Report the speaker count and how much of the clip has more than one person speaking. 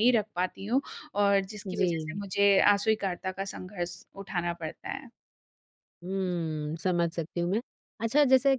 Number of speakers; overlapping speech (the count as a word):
two, about 7%